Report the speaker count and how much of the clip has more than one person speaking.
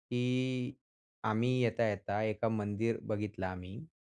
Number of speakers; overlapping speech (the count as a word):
one, no overlap